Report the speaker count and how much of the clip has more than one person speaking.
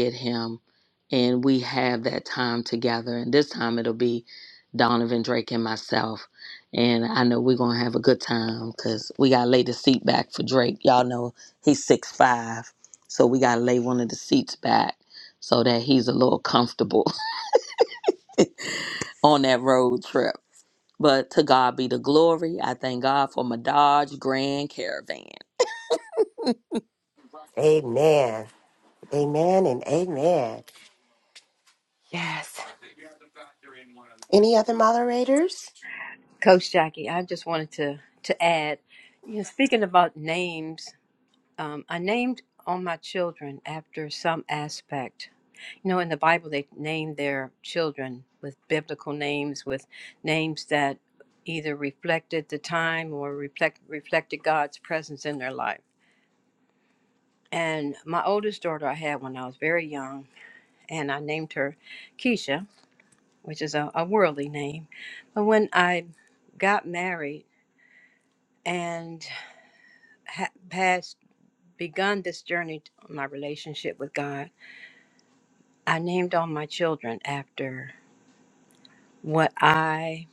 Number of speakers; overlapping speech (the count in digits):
3, no overlap